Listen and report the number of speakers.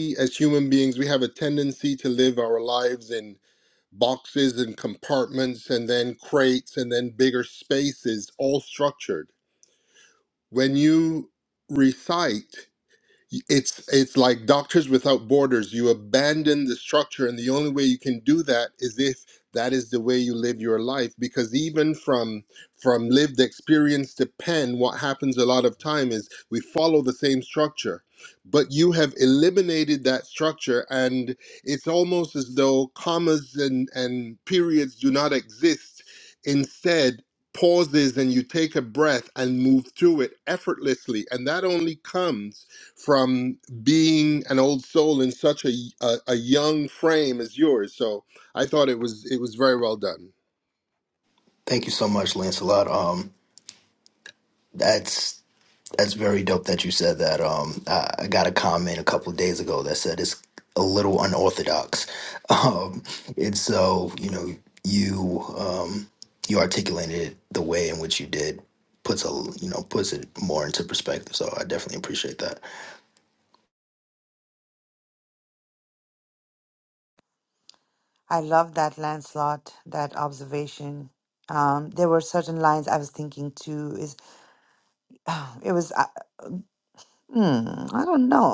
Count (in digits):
3